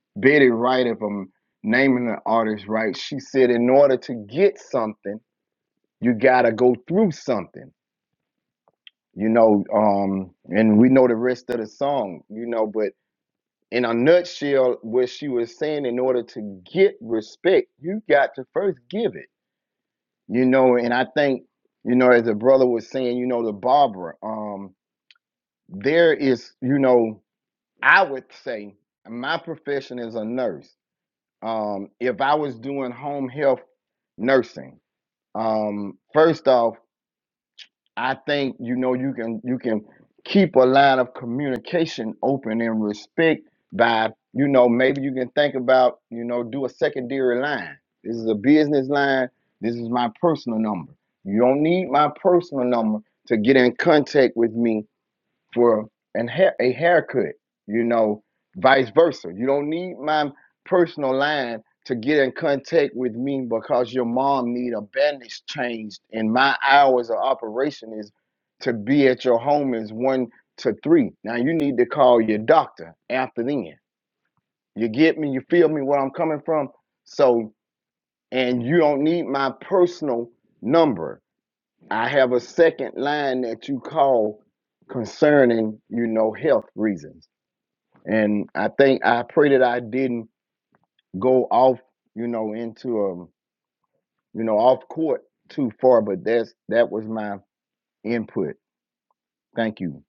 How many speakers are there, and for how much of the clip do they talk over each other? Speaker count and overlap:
1, no overlap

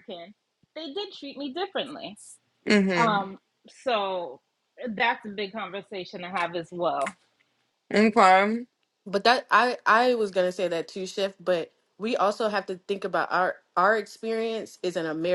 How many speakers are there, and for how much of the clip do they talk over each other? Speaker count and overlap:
3, about 2%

